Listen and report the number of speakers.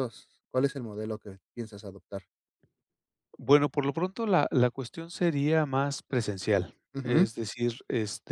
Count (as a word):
two